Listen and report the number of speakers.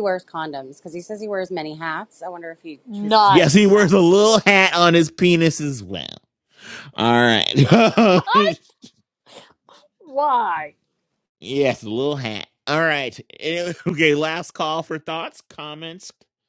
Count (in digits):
3